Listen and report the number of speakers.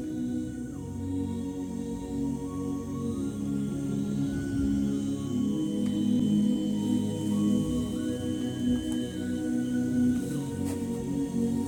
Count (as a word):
zero